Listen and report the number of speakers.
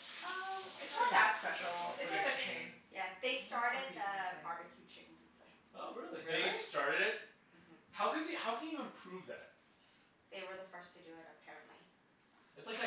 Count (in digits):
4